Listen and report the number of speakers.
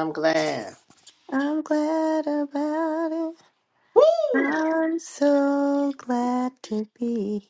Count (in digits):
2